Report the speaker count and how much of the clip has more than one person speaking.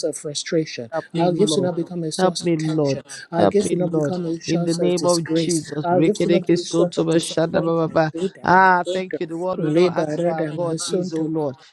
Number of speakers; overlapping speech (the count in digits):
2, about 72%